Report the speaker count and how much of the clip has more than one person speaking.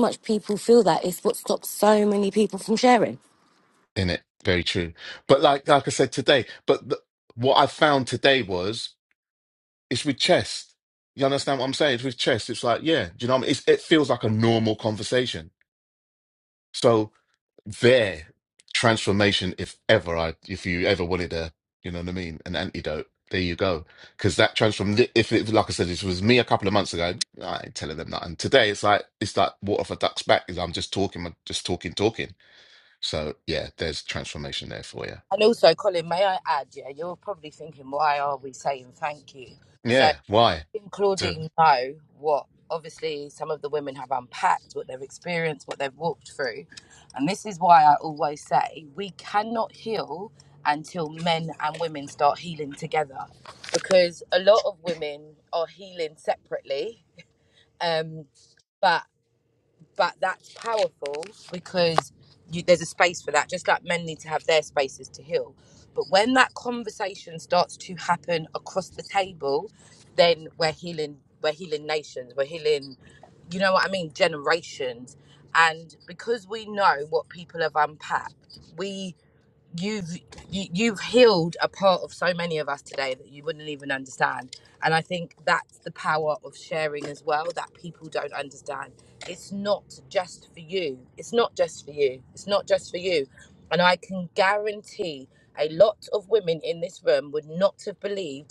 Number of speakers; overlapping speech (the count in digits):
3, under 1%